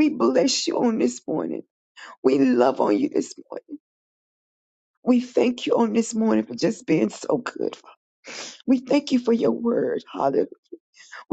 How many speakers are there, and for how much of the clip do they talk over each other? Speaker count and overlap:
1, no overlap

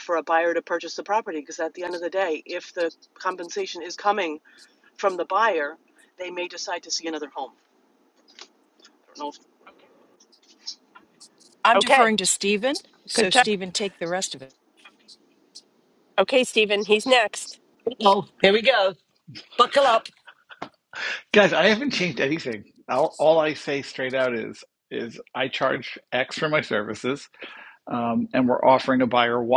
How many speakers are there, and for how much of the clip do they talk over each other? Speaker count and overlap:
5, about 2%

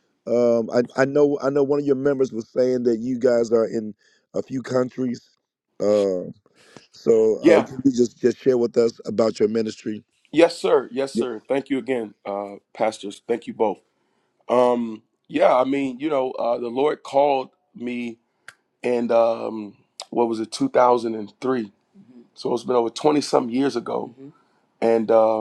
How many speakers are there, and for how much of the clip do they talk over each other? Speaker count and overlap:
2, about 1%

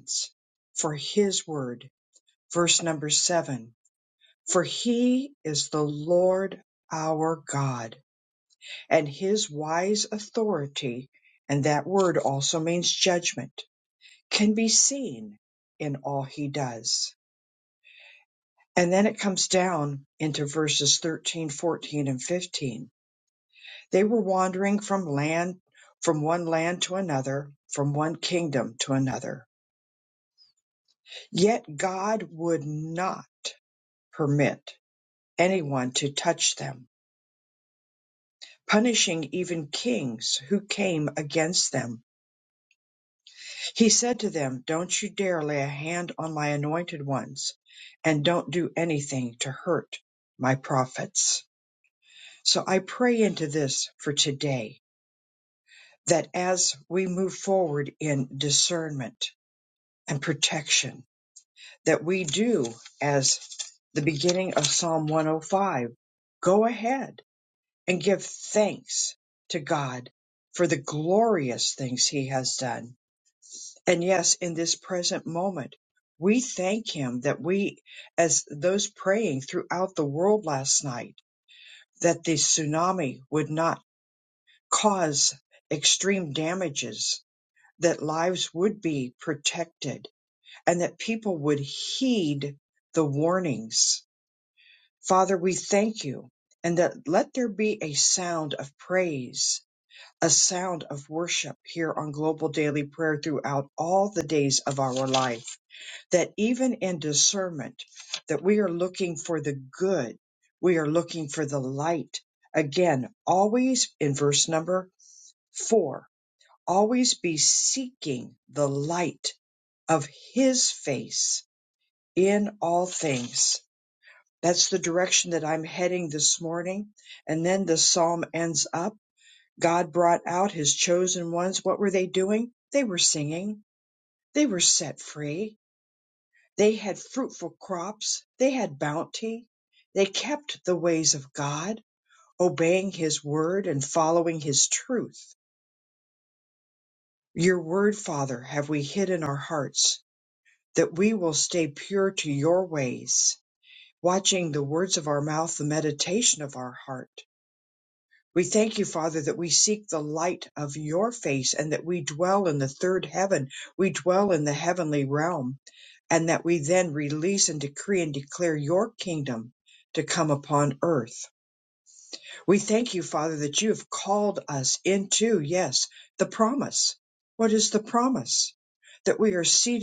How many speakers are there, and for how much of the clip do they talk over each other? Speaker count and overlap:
1, no overlap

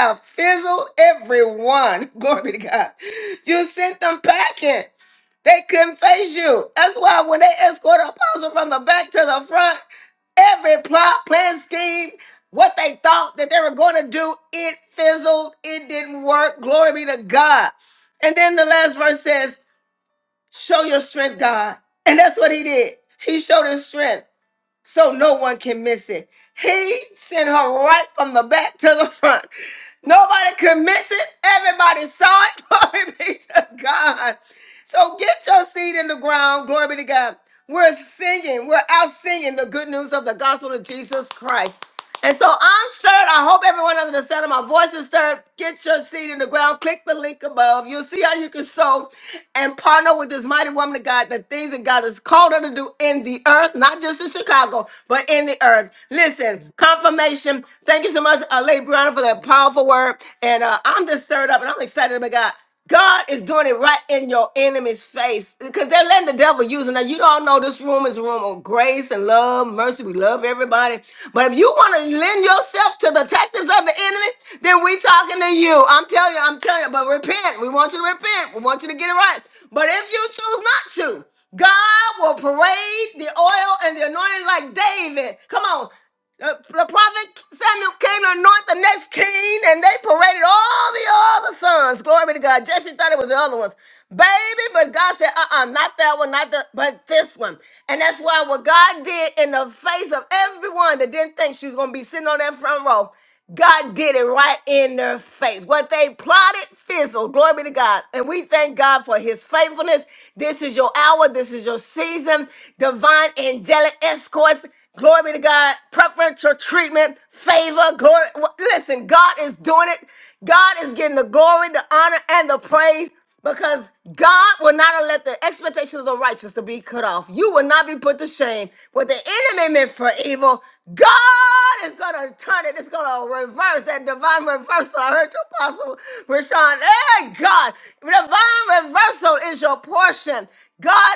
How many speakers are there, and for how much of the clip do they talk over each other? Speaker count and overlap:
1, no overlap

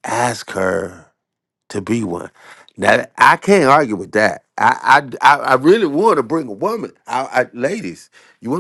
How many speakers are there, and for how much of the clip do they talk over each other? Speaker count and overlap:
1, no overlap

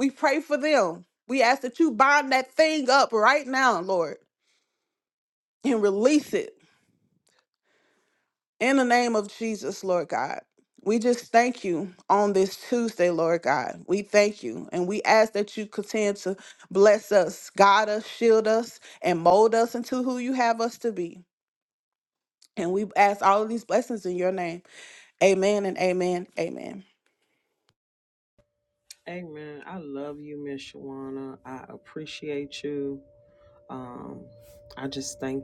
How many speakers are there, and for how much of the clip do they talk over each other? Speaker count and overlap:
2, no overlap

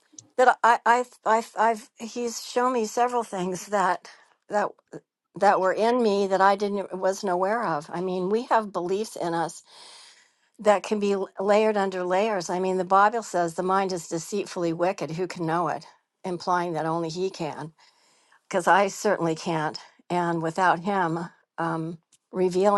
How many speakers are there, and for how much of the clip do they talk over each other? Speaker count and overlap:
1, no overlap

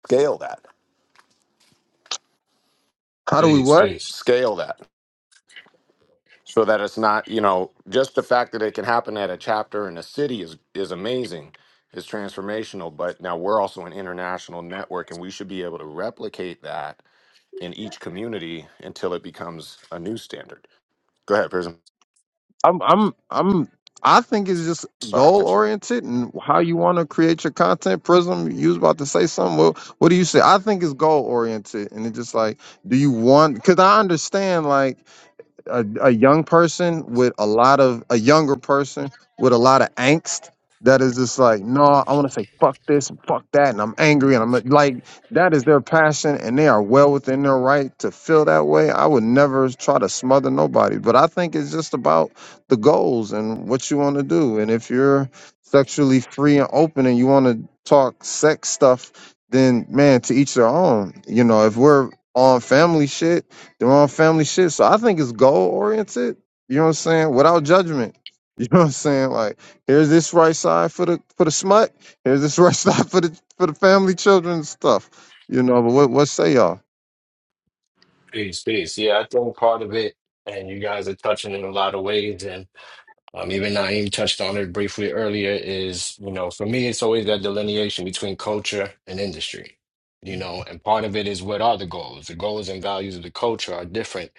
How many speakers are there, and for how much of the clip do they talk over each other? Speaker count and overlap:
3, about 1%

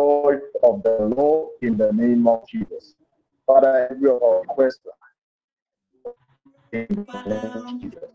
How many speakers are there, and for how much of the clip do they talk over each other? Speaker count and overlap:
1, no overlap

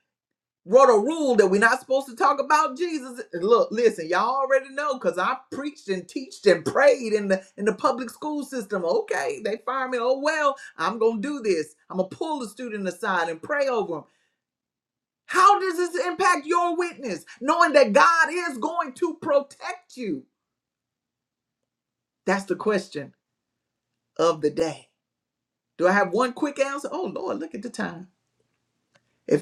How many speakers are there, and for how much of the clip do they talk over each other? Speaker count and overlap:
1, no overlap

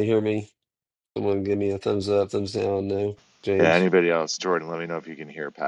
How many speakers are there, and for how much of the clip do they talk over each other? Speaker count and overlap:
2, about 4%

